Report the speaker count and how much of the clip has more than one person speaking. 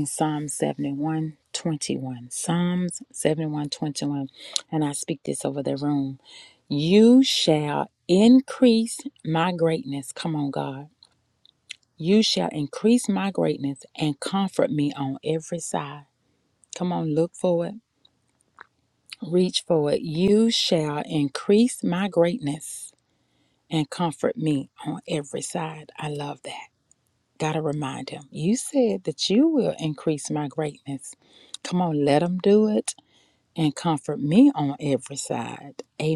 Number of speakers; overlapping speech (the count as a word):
one, no overlap